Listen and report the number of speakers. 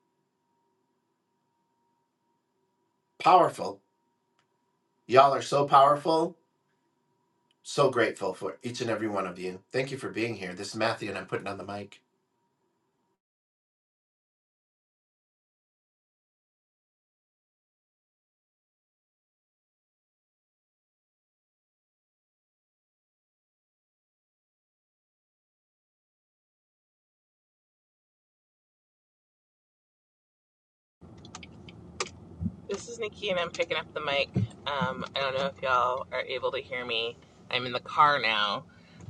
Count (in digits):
2